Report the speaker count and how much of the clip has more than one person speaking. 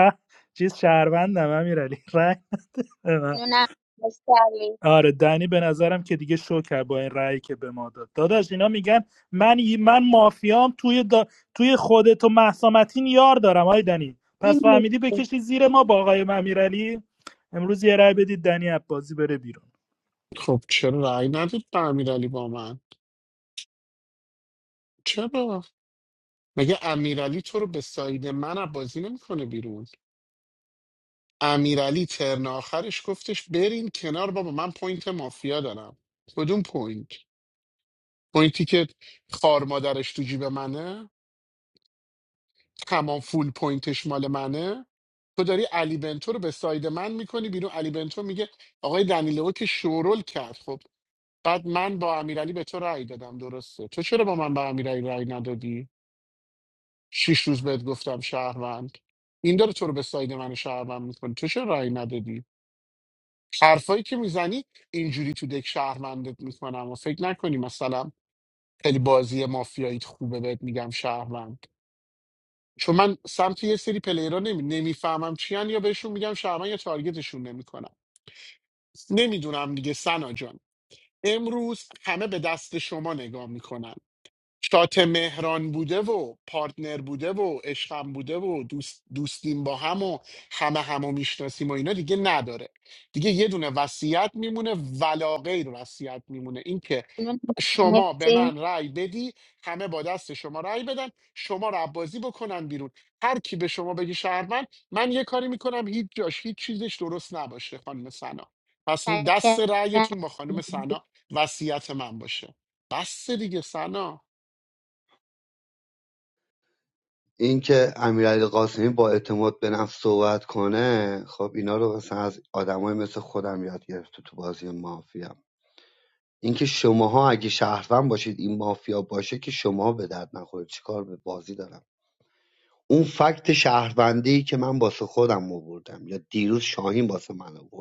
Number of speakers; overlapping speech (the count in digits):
4, about 1%